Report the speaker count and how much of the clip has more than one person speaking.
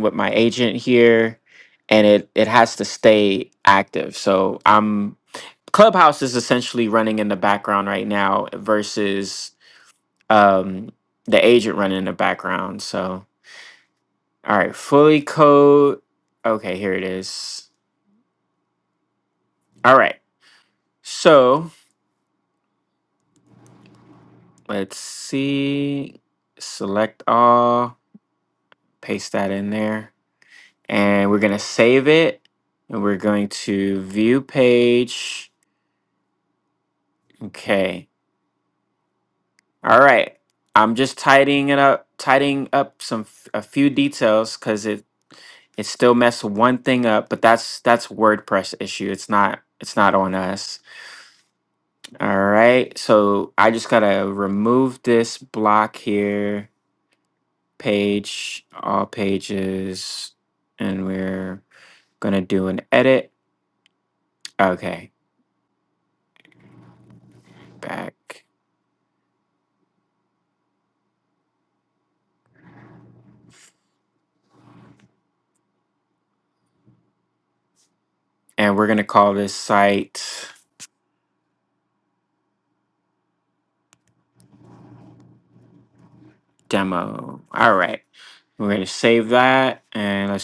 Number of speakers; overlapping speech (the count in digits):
1, no overlap